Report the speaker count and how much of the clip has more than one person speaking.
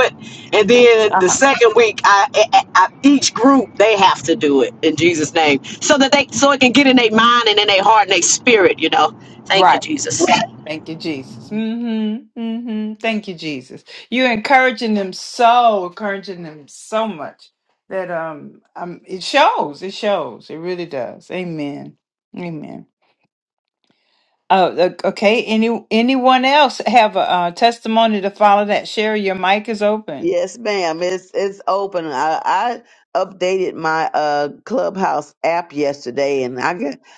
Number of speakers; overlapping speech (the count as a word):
three, about 2%